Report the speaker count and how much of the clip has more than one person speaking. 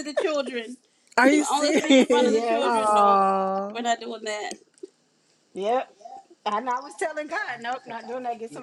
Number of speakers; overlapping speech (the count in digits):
3, about 22%